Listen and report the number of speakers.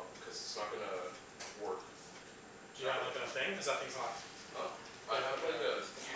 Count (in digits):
2